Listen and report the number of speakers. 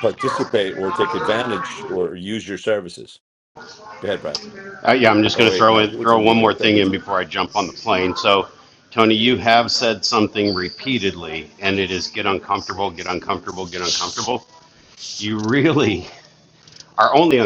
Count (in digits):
2